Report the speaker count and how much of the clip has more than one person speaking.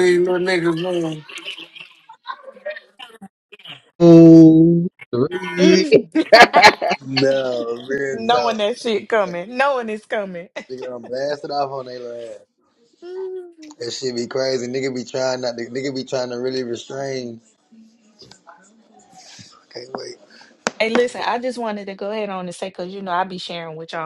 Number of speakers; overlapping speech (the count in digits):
4, about 3%